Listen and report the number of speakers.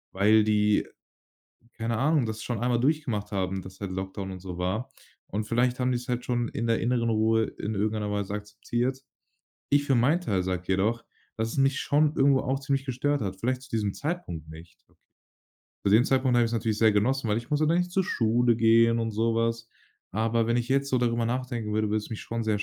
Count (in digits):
1